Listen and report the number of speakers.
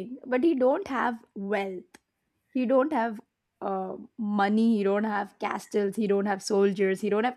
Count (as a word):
one